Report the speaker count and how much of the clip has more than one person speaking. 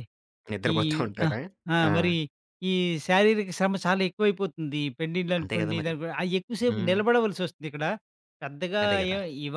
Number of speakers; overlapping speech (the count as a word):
two, about 19%